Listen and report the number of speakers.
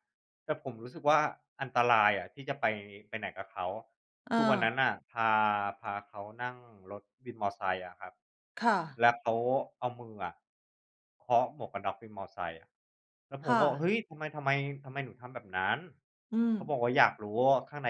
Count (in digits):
2